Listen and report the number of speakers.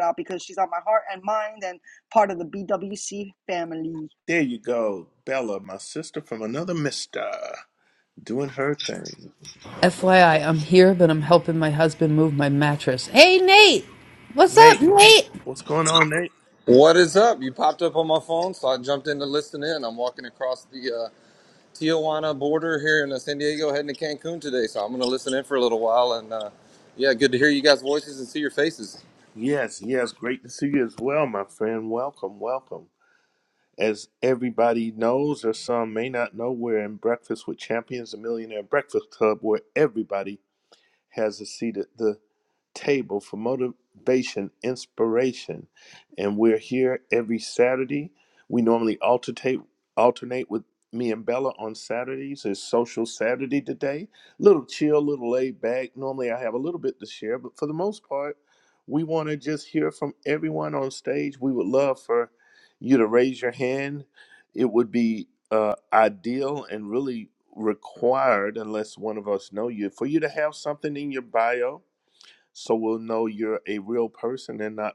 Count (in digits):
4